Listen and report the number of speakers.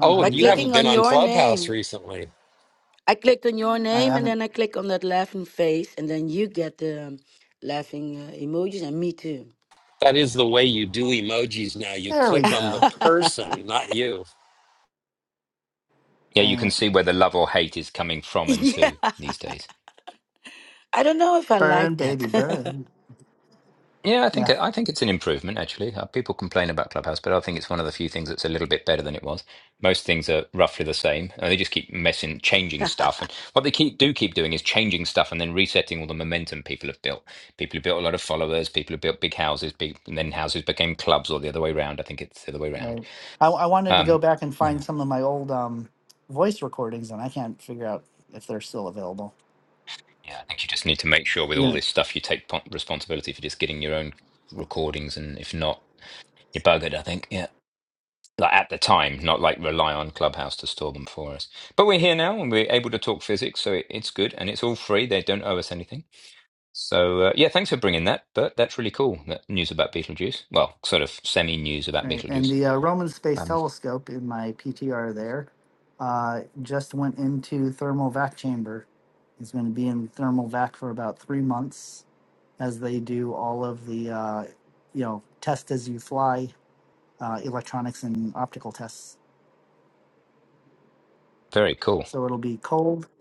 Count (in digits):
4